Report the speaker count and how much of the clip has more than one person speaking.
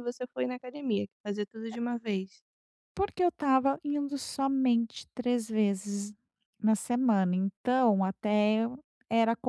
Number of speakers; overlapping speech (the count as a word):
two, about 1%